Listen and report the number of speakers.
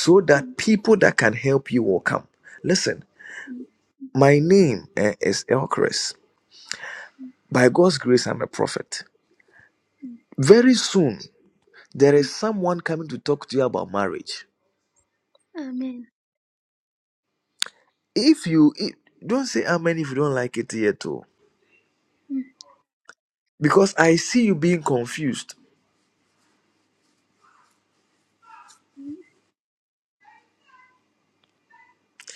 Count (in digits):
2